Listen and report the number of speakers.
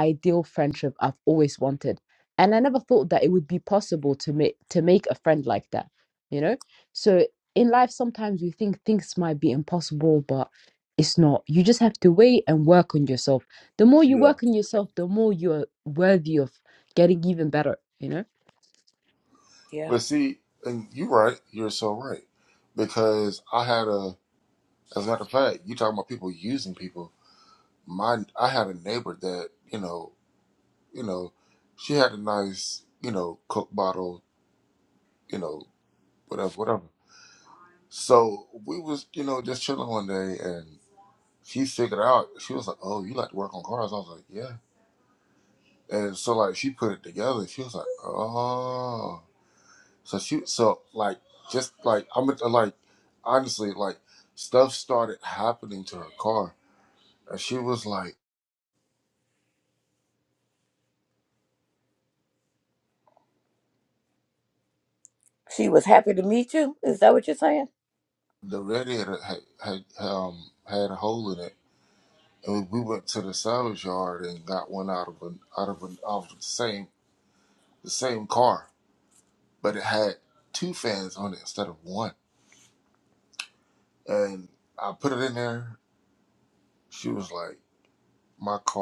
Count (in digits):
3